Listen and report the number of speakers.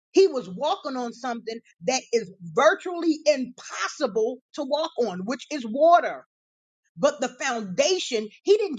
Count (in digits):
1